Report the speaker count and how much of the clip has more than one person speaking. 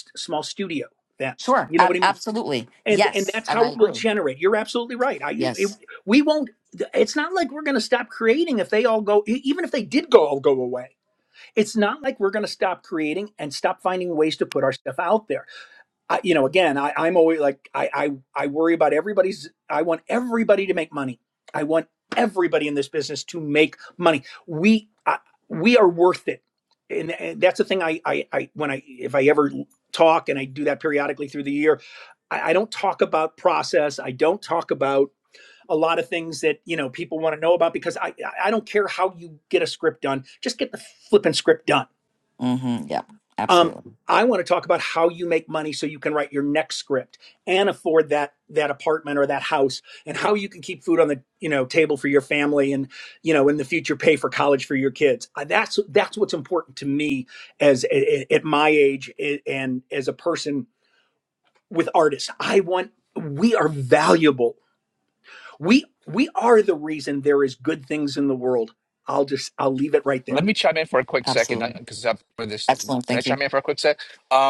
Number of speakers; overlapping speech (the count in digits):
3, about 4%